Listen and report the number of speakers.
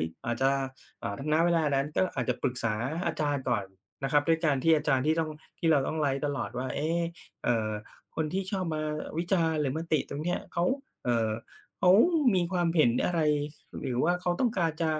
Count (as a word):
one